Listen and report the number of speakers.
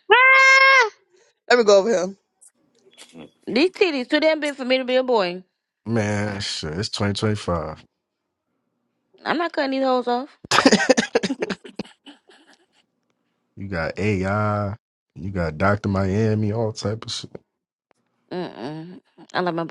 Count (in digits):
3